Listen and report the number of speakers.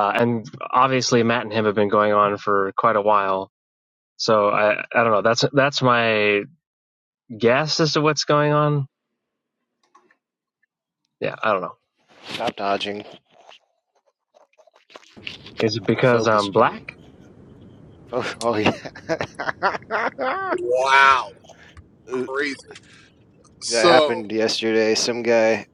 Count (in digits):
3